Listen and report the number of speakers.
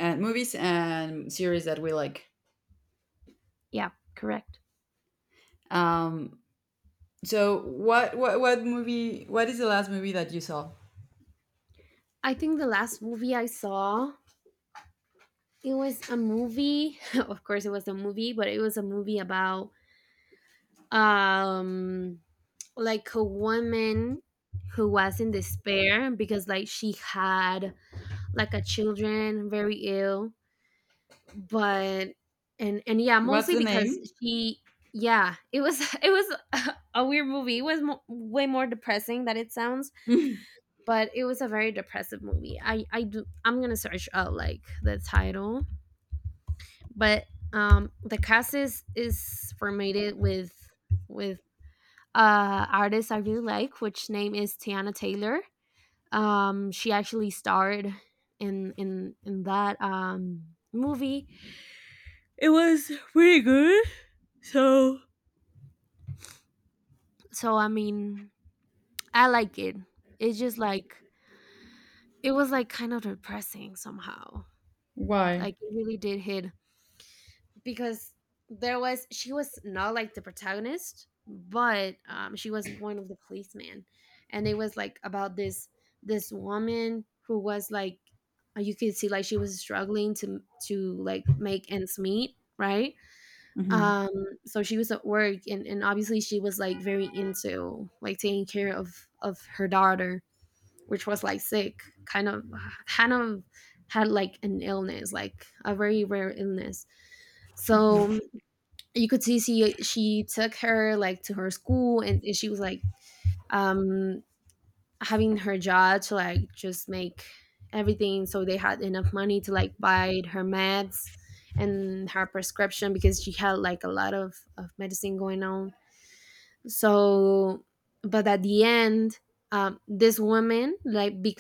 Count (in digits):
2